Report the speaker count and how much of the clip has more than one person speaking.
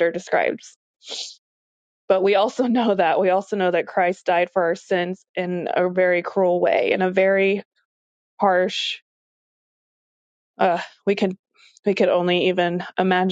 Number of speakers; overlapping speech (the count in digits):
1, no overlap